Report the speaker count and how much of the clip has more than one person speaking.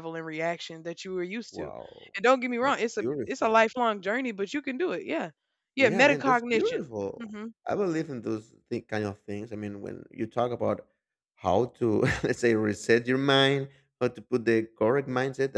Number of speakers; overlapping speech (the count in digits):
2, about 14%